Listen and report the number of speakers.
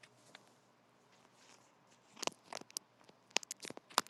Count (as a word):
zero